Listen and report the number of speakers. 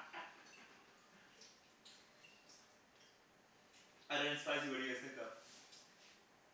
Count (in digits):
1